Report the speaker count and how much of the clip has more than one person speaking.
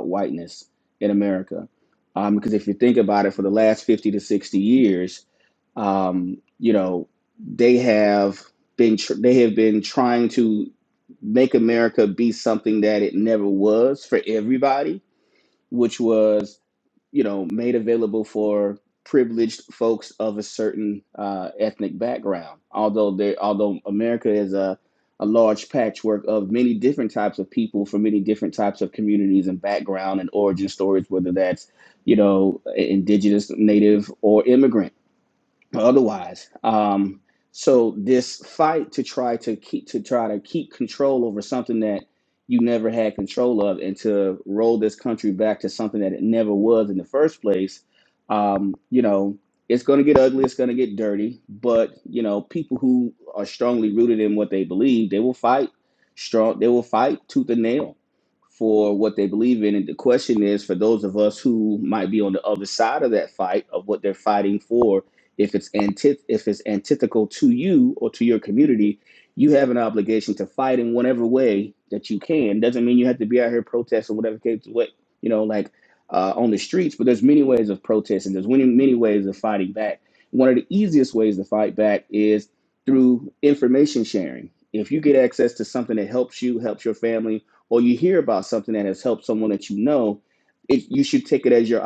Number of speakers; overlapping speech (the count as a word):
one, no overlap